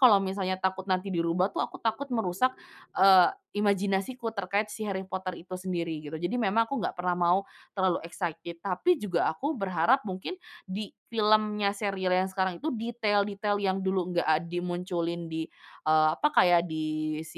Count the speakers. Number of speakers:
1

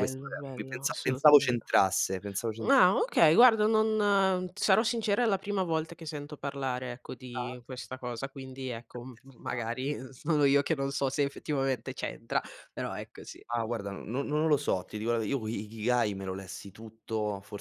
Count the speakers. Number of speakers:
2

